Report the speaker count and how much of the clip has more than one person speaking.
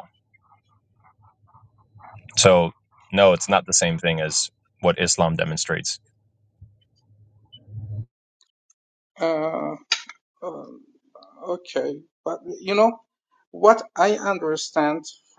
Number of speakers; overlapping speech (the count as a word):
two, no overlap